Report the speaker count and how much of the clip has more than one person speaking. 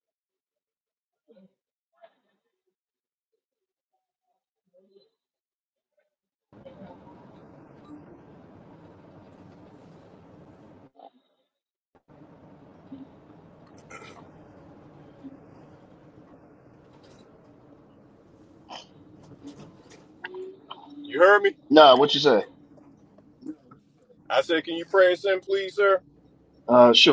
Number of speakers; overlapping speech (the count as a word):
two, no overlap